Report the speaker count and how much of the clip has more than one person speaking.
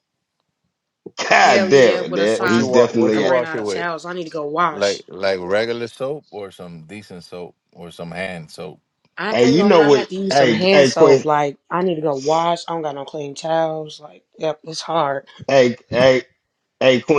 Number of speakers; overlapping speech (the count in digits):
3, about 26%